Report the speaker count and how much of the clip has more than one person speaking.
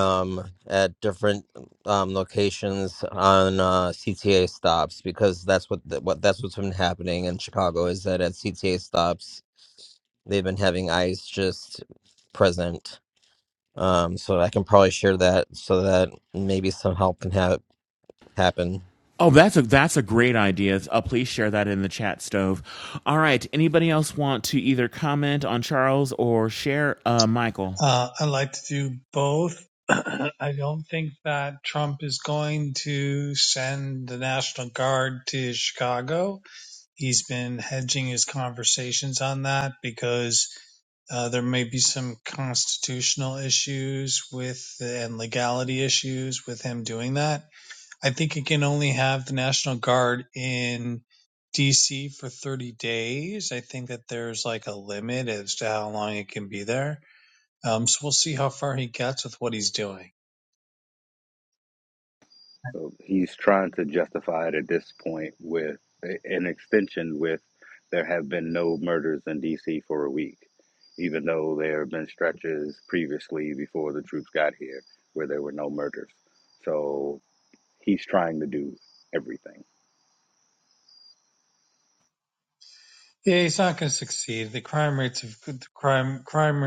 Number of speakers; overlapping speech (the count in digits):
4, no overlap